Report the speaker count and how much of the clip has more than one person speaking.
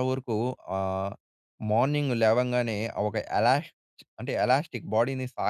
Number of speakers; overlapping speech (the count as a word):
one, no overlap